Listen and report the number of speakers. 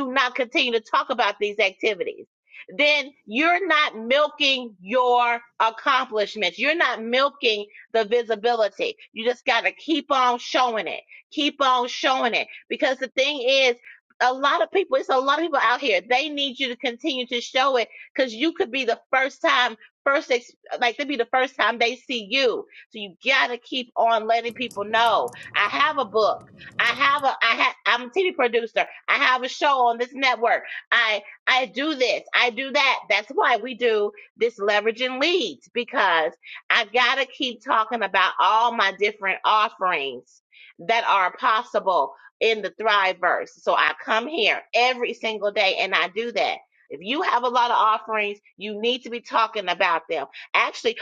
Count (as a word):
one